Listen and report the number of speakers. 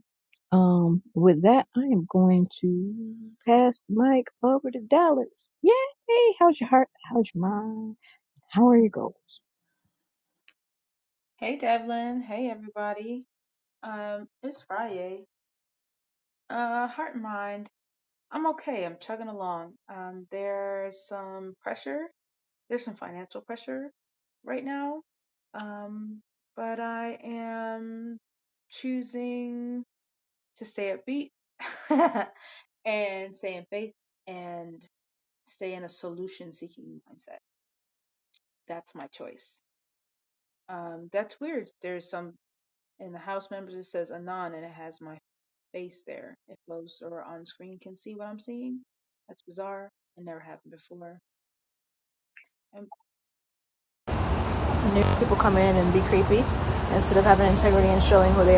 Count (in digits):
3